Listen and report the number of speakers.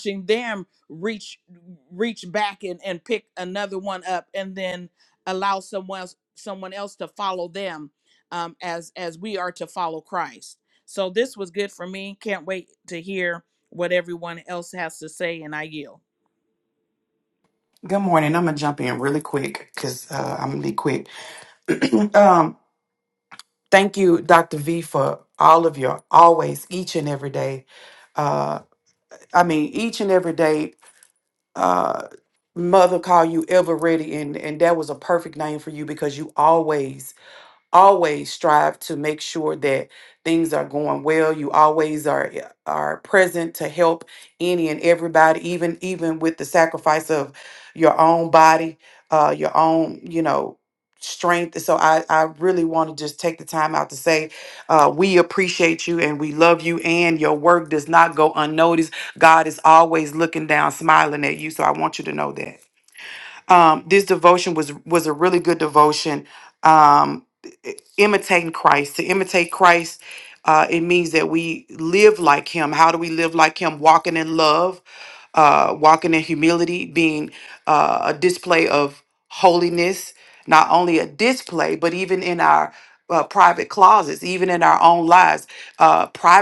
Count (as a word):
two